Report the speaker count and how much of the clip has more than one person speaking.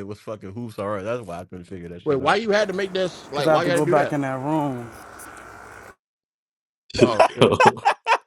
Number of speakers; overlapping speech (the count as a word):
three, about 16%